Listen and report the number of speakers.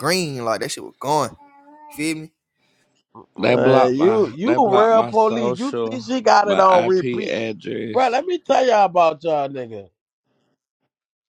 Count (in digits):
3